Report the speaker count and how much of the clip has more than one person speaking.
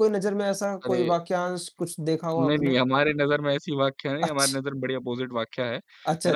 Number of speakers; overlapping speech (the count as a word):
two, about 19%